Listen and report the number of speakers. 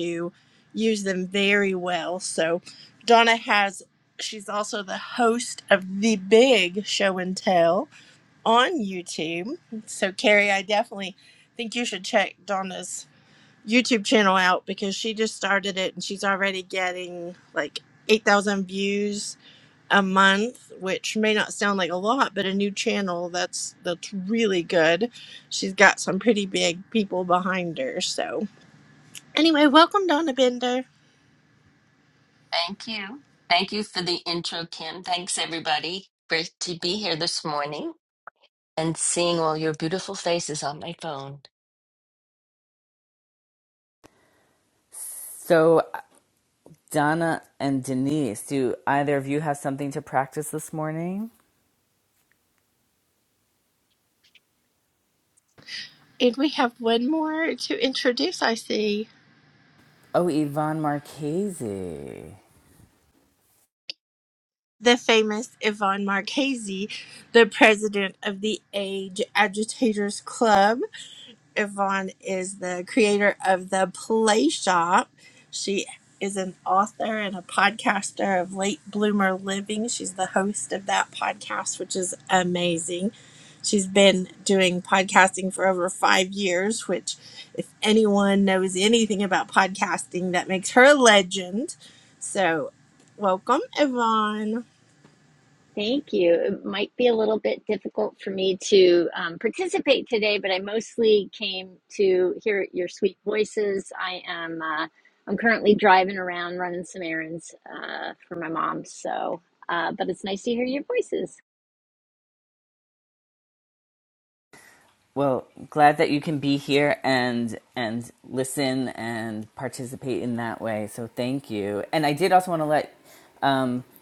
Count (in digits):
4